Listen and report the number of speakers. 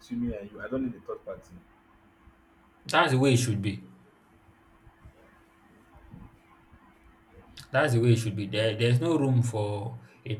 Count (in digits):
2